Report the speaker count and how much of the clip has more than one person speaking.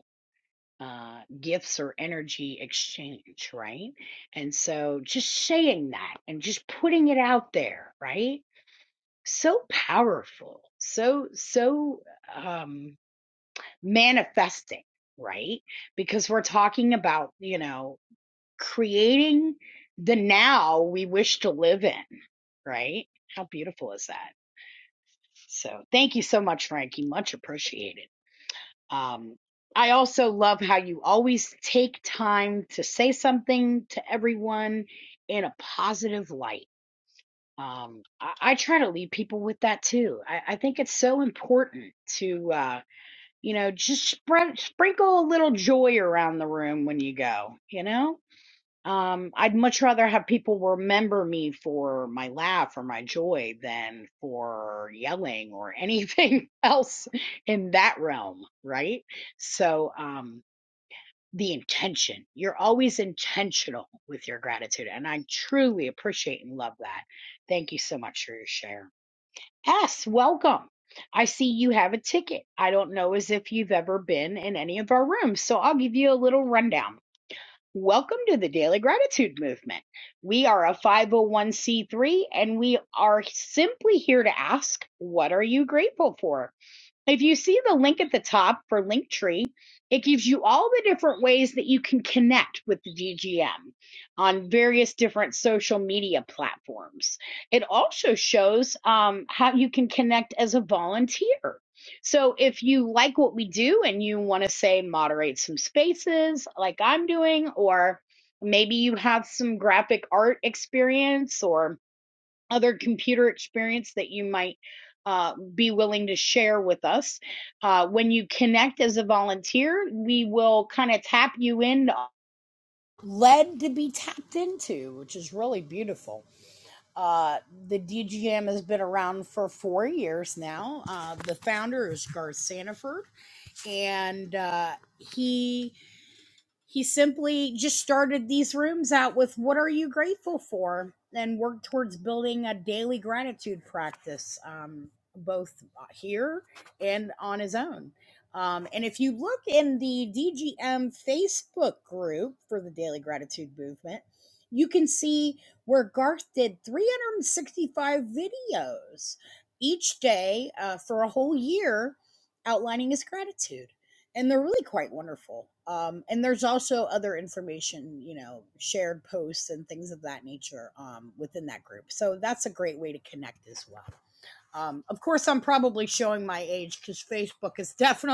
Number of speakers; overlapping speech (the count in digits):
1, no overlap